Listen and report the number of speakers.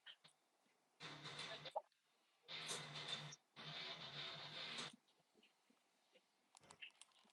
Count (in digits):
0